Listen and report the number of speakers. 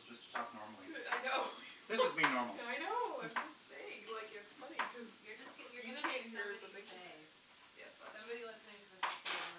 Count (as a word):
three